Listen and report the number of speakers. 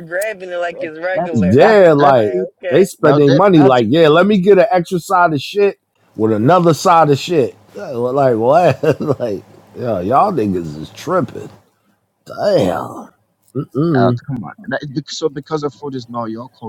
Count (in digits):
3